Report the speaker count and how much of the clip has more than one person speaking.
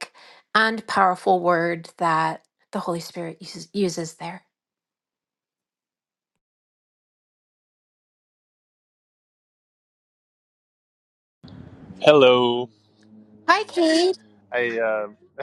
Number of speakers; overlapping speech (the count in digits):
2, no overlap